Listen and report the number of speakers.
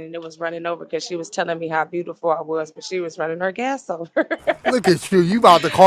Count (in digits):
2